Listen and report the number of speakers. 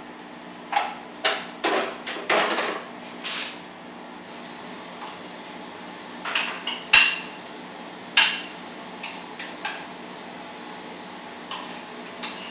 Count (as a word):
zero